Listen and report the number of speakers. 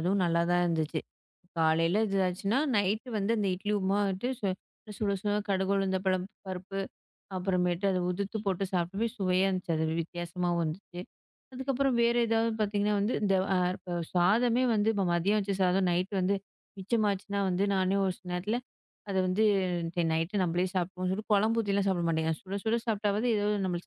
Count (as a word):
one